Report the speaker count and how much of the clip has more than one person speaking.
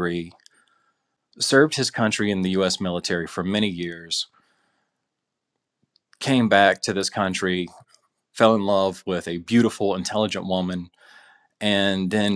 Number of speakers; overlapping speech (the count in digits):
1, no overlap